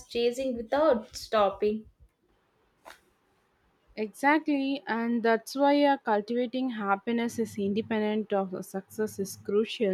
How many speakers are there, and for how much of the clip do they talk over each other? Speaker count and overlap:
2, no overlap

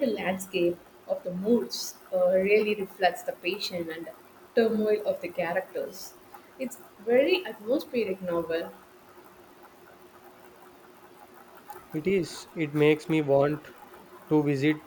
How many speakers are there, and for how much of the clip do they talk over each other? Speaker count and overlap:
2, no overlap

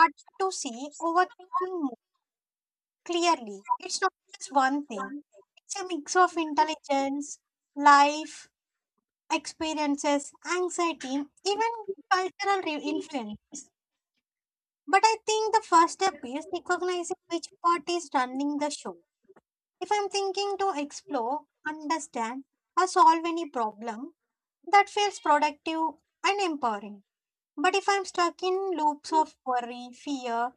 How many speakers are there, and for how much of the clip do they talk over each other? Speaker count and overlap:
1, no overlap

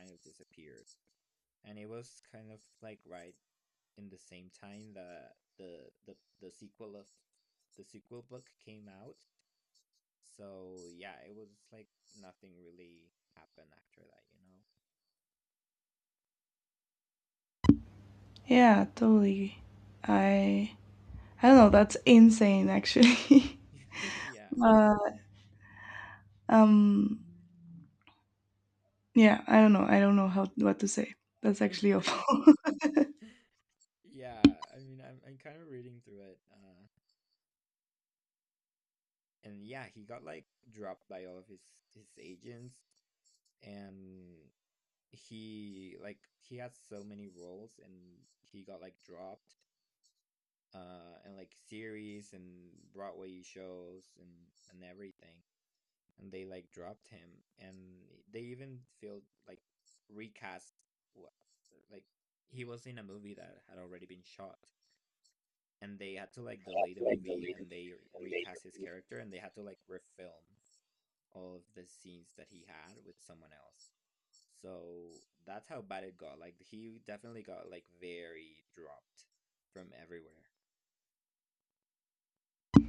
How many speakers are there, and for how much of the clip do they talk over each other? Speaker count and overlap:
2, under 1%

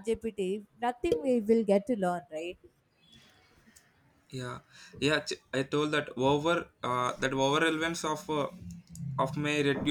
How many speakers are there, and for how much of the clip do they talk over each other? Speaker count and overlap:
2, no overlap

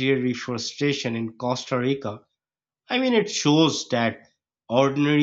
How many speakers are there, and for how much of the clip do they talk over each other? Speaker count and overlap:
1, no overlap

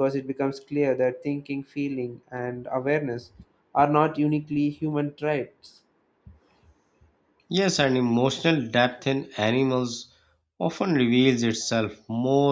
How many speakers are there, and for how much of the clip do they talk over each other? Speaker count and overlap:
2, no overlap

